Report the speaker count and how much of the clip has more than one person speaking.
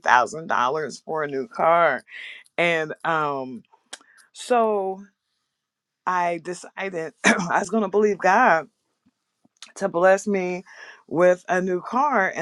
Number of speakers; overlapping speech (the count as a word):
one, no overlap